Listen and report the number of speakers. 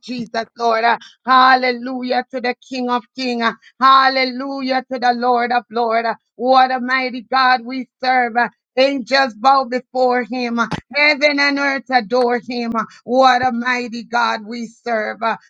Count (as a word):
one